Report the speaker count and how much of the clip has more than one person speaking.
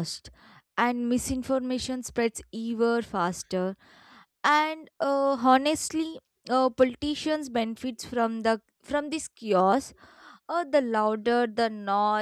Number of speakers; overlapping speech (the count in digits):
1, no overlap